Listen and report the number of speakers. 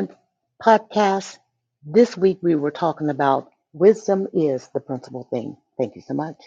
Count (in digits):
1